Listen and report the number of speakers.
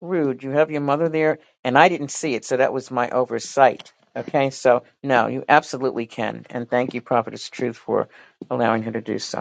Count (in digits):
1